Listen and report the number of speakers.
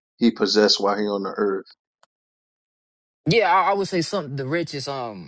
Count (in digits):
2